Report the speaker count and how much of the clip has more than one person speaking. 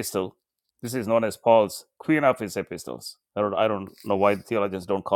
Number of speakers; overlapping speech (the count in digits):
1, no overlap